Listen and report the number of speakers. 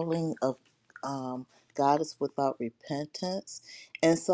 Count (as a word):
one